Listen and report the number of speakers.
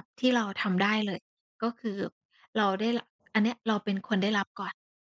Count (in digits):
1